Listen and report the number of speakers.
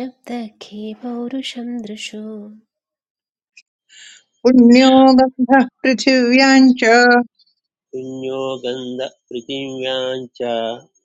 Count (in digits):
3